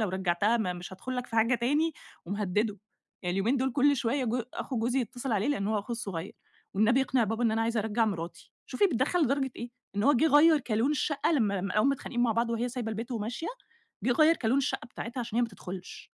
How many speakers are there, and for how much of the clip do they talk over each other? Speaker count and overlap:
one, no overlap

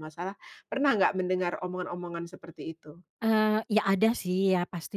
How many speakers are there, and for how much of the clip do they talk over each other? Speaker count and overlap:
two, no overlap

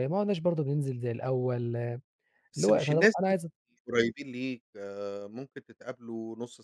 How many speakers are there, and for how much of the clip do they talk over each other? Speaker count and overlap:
two, about 11%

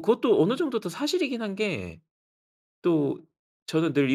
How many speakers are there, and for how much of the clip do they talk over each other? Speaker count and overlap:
one, no overlap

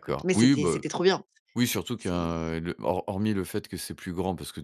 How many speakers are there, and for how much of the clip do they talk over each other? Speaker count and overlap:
two, about 25%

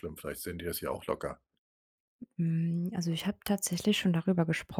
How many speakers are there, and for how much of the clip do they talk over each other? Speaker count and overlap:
two, no overlap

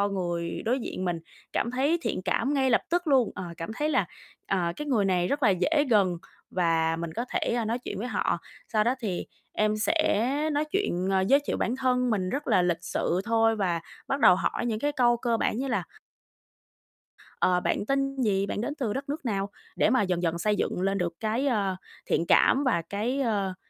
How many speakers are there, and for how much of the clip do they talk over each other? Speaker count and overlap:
one, no overlap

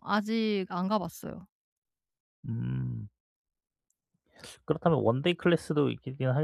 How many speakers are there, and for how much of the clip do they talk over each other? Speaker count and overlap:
two, no overlap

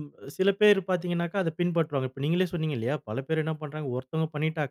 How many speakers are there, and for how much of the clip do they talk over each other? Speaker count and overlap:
one, no overlap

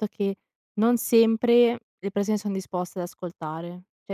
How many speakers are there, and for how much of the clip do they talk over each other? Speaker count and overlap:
one, no overlap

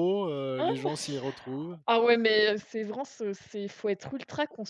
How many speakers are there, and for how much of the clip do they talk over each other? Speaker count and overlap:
two, about 8%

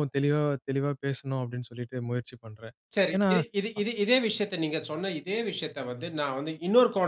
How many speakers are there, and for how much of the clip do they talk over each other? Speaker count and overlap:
two, about 4%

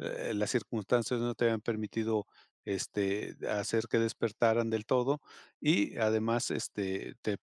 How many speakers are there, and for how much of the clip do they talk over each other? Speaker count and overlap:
one, no overlap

